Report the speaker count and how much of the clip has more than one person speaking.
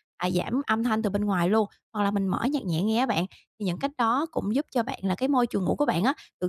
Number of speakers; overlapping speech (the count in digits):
1, no overlap